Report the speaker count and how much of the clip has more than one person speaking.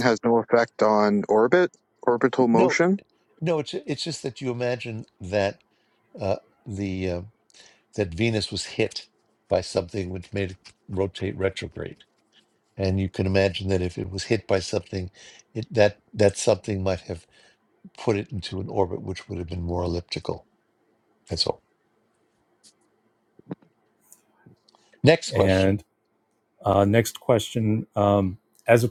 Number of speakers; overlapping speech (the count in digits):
3, about 2%